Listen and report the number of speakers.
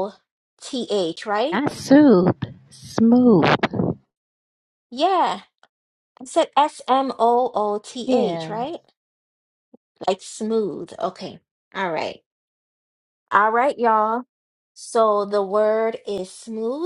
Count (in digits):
2